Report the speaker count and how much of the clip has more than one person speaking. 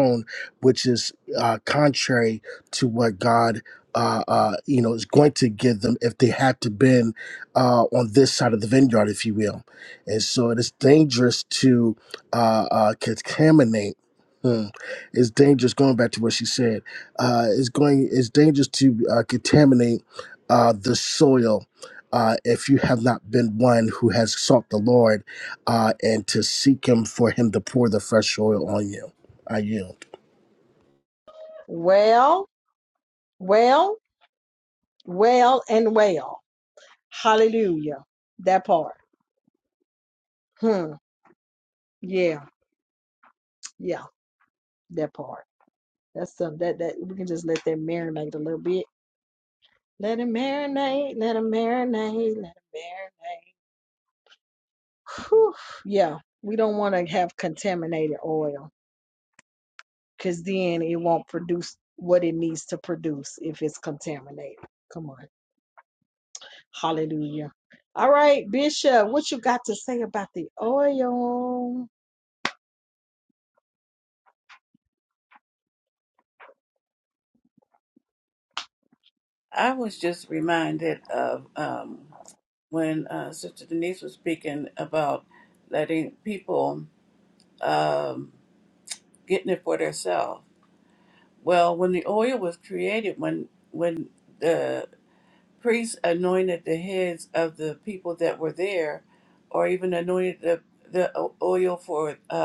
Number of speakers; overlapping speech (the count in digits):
3, no overlap